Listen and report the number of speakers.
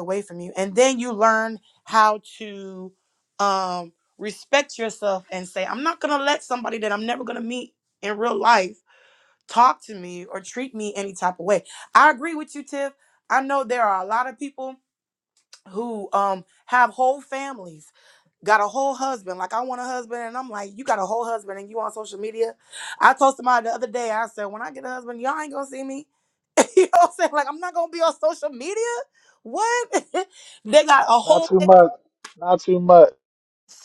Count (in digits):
2